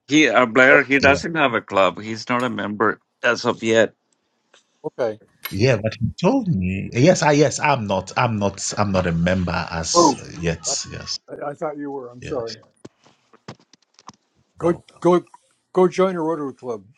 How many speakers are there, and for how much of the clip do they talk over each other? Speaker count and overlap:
3, about 5%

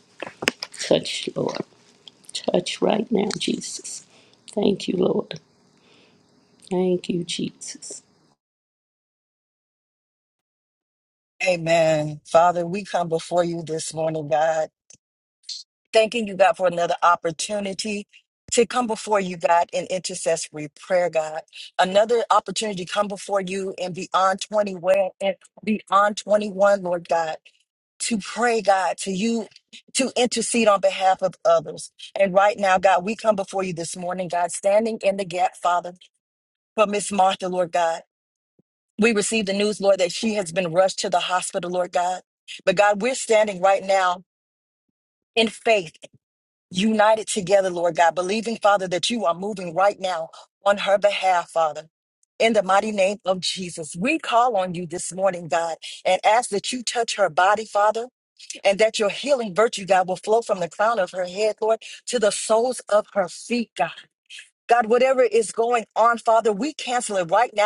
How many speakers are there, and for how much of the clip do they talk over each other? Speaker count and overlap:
2, no overlap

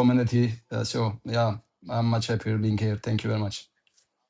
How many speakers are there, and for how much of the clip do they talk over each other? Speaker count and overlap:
1, no overlap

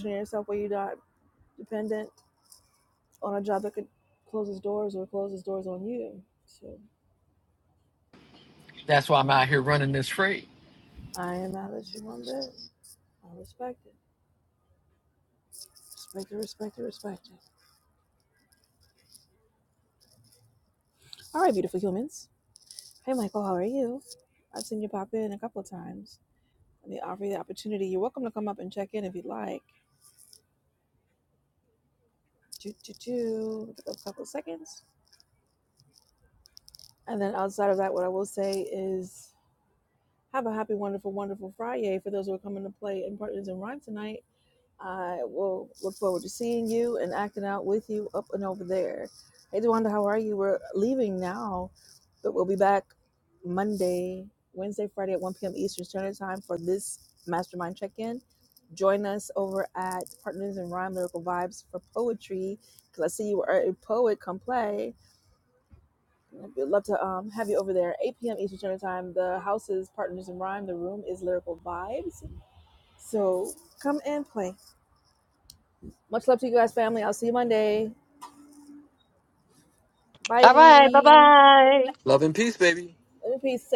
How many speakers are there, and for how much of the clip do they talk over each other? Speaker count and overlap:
3, under 1%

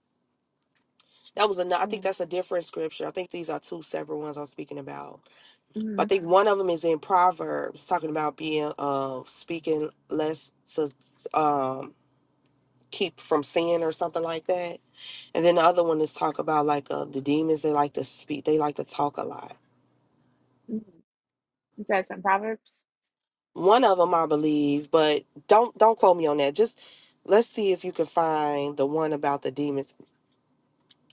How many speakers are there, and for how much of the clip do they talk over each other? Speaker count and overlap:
2, about 1%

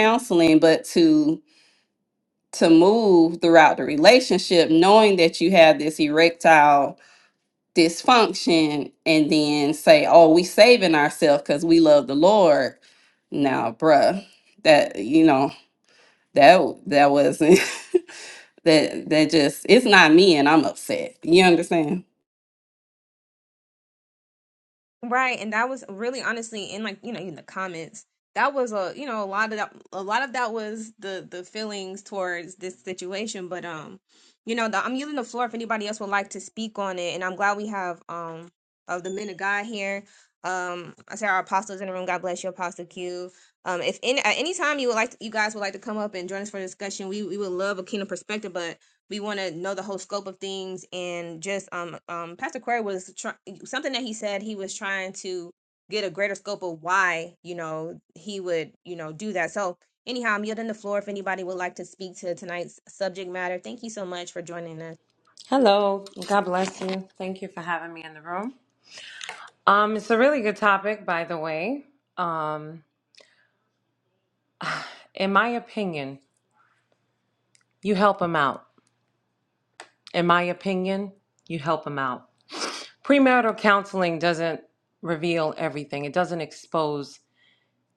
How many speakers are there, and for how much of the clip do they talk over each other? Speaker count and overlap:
3, no overlap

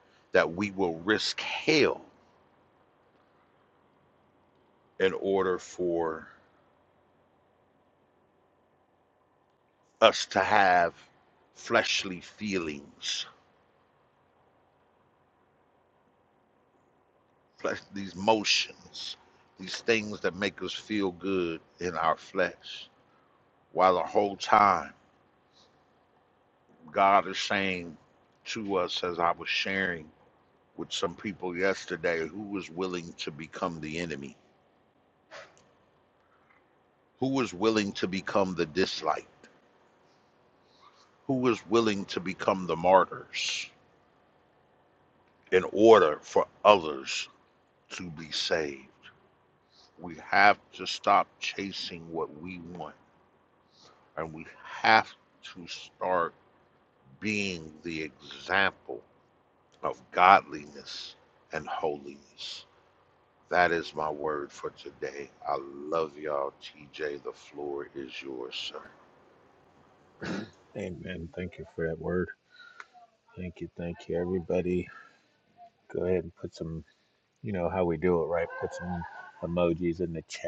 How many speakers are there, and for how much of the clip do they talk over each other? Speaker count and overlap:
2, no overlap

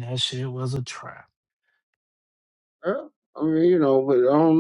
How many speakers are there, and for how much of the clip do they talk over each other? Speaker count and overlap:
2, no overlap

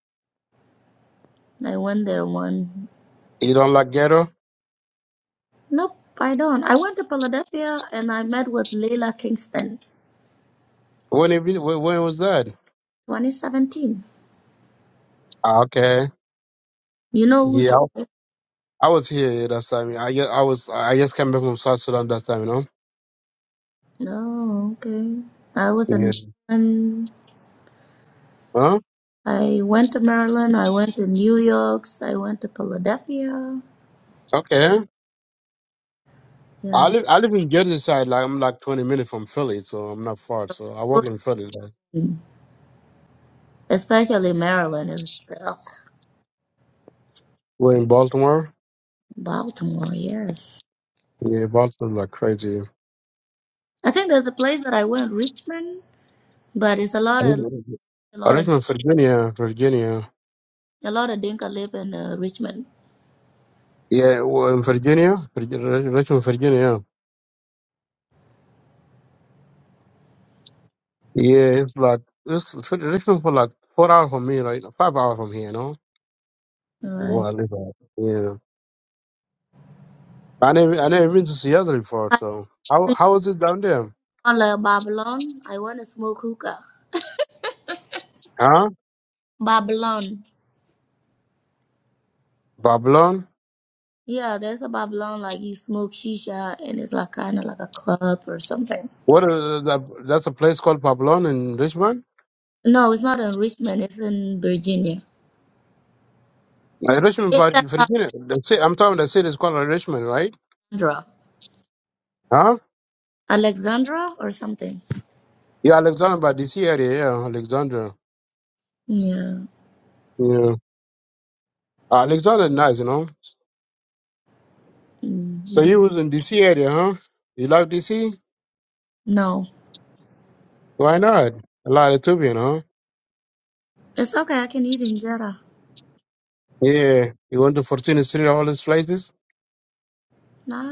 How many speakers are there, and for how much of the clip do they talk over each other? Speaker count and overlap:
2, about 2%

